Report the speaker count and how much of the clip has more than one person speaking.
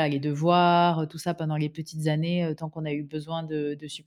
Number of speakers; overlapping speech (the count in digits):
1, no overlap